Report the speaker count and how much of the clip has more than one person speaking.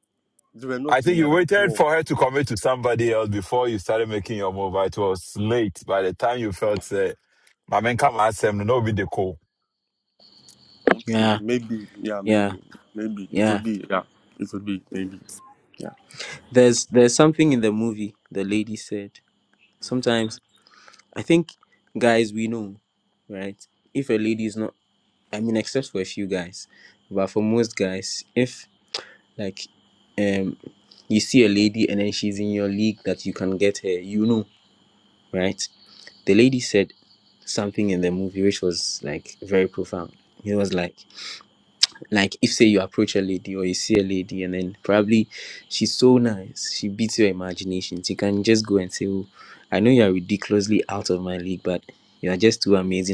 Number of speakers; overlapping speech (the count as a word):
three, about 4%